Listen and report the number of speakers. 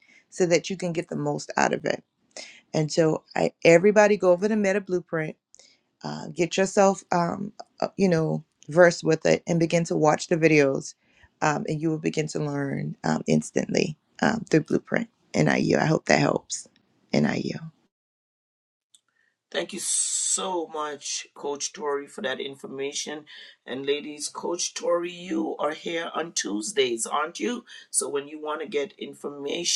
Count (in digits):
2